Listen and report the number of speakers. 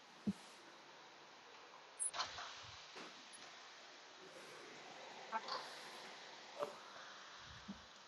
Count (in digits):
0